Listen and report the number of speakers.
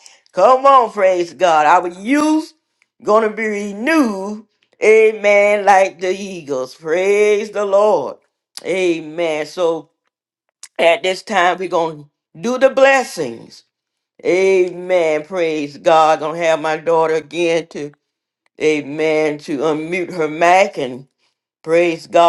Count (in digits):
1